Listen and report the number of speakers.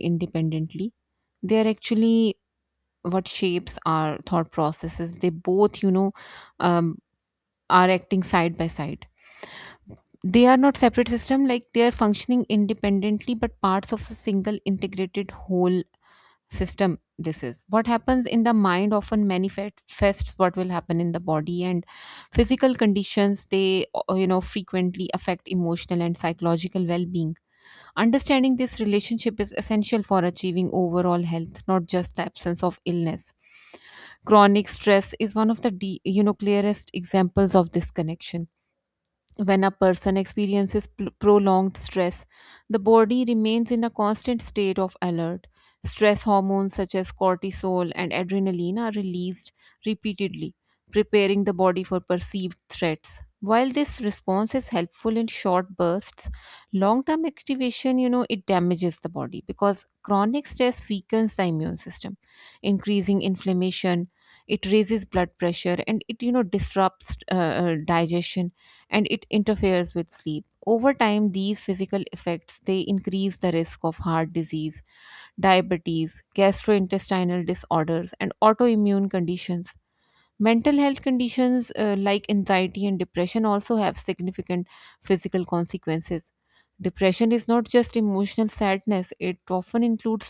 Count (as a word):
one